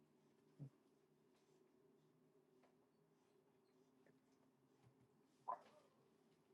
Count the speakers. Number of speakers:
zero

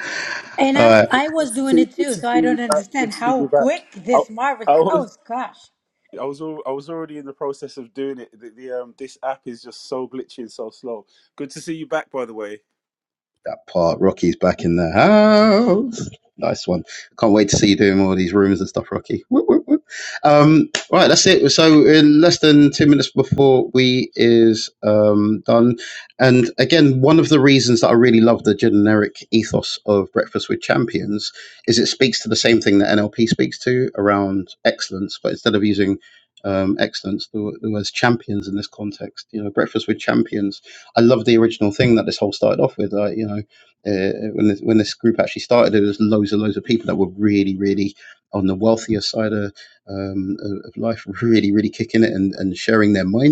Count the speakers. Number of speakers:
three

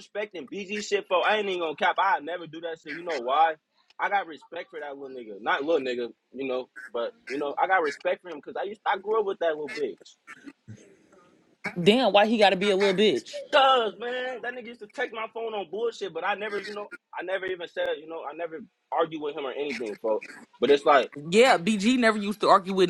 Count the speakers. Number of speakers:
two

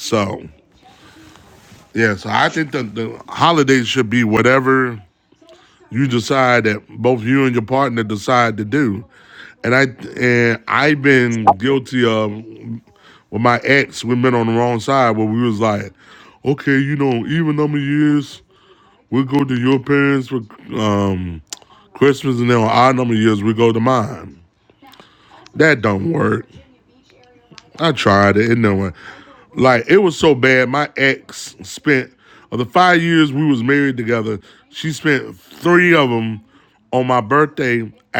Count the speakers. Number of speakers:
one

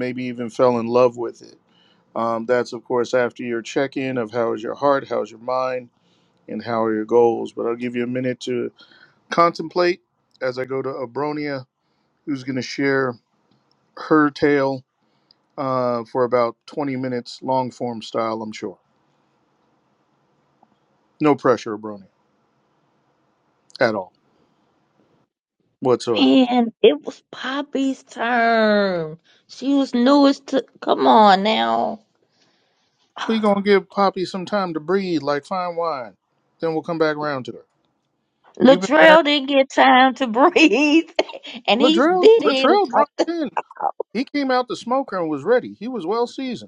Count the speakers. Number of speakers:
two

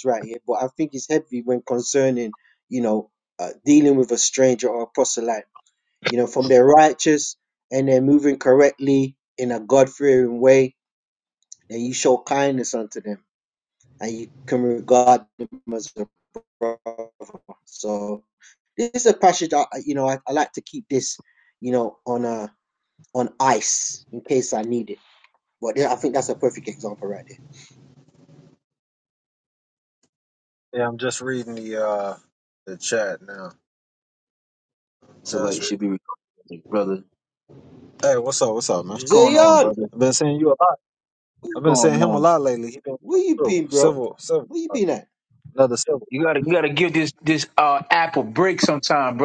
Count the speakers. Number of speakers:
three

